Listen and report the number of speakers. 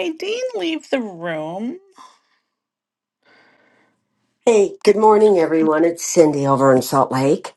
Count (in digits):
2